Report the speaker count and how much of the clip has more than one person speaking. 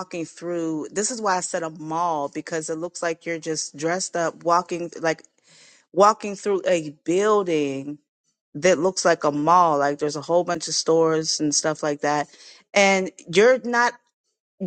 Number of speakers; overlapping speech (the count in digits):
1, no overlap